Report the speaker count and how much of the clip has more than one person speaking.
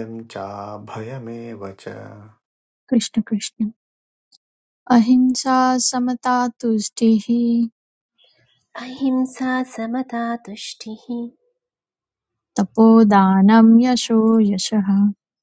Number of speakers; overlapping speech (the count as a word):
three, no overlap